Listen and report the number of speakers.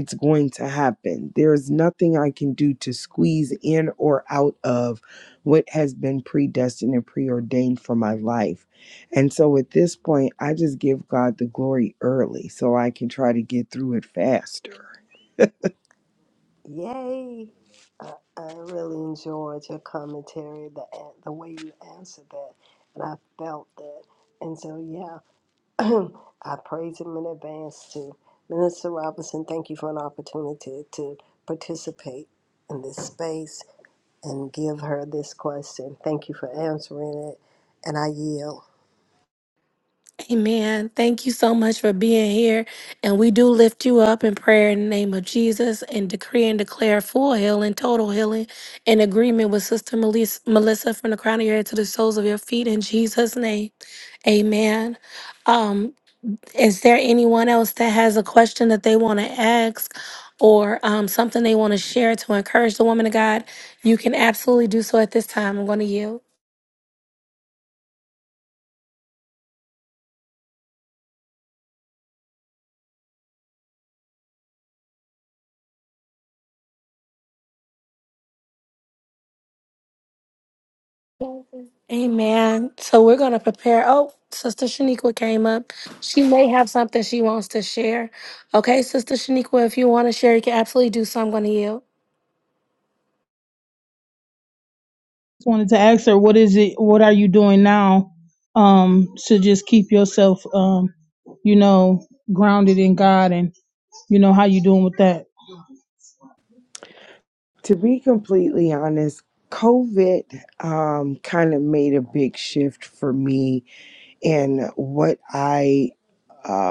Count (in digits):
4